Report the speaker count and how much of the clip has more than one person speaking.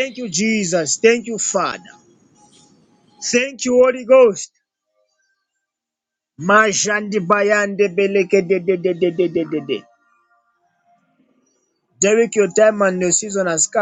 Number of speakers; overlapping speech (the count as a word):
one, no overlap